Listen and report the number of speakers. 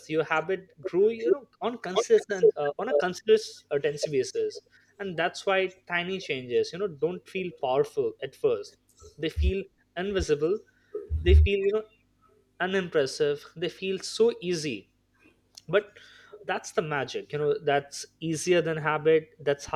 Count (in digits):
1